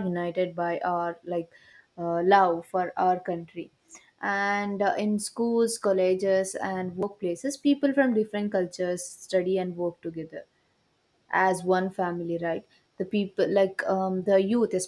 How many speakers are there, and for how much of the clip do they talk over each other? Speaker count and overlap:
1, no overlap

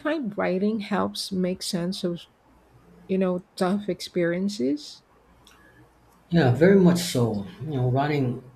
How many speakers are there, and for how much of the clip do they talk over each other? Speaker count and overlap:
2, no overlap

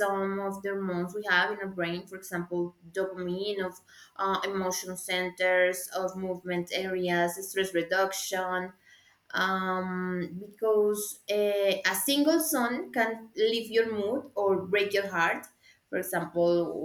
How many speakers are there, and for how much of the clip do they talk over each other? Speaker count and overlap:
1, no overlap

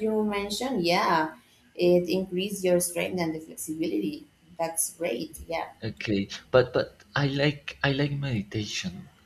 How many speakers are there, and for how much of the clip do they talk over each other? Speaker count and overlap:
2, no overlap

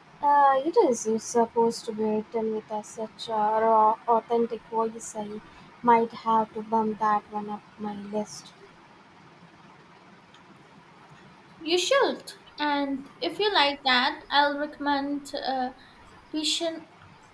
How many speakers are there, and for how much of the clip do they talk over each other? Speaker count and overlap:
2, no overlap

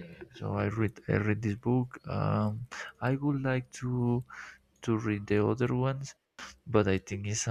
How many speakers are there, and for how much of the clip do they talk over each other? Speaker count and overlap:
1, no overlap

